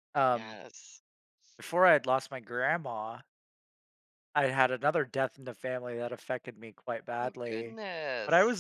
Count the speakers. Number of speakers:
two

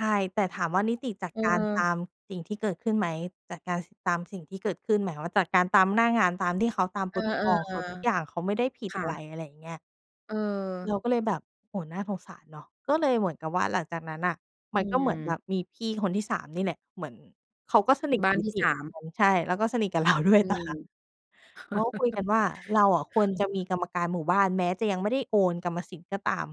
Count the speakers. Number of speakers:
two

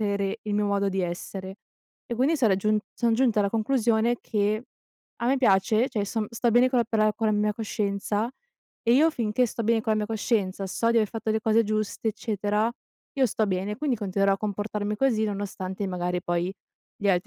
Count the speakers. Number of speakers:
one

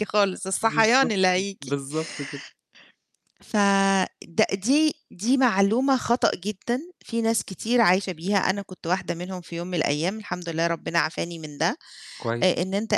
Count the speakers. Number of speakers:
two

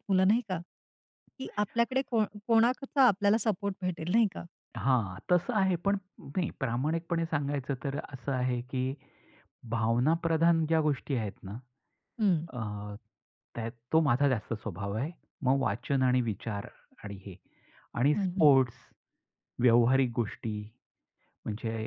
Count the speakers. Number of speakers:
two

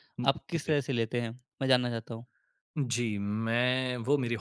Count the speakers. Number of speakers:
two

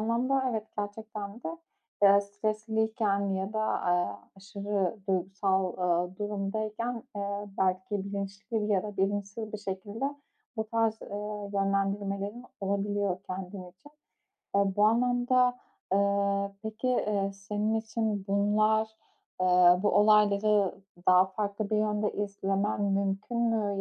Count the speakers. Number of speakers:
one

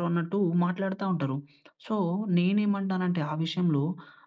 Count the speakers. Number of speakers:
one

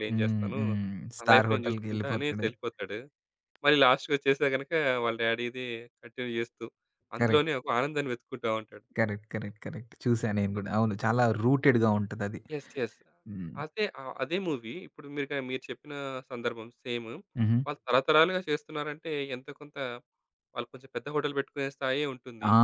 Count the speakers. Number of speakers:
two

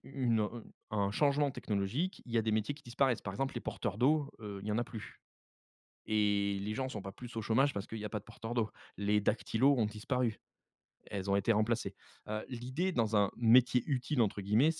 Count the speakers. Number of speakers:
one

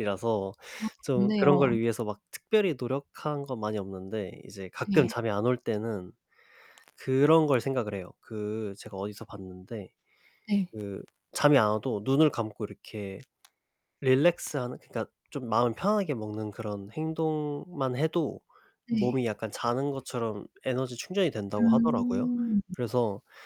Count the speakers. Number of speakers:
two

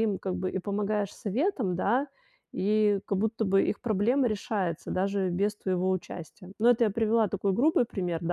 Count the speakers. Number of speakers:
one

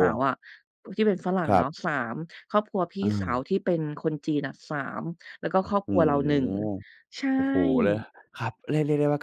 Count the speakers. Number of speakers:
two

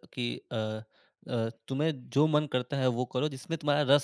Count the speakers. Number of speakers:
one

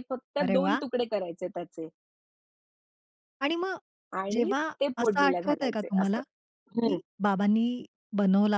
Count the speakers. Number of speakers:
two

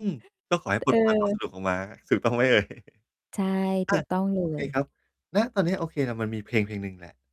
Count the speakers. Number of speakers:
two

